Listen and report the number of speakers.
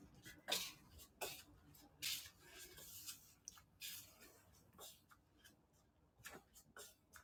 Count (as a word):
zero